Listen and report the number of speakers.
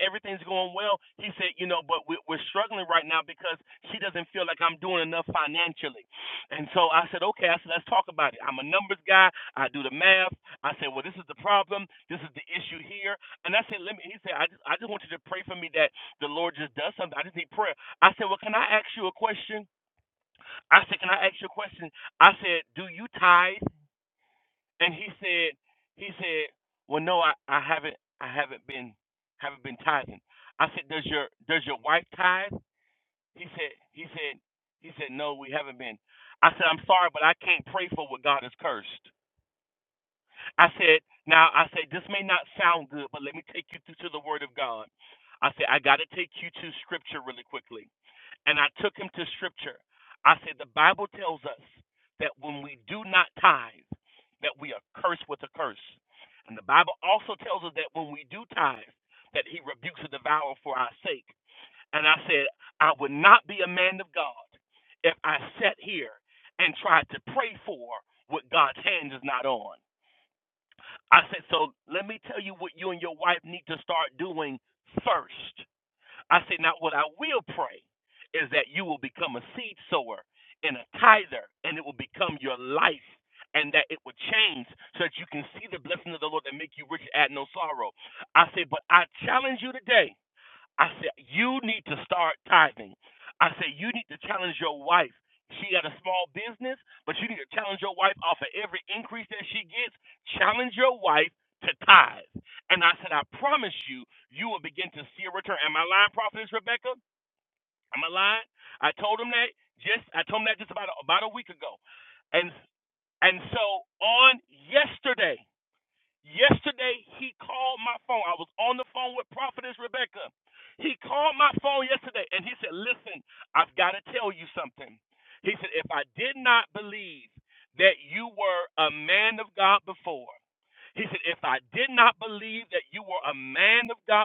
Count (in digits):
1